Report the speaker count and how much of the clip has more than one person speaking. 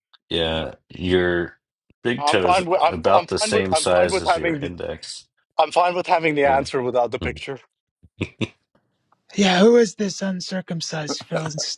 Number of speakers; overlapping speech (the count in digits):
3, about 23%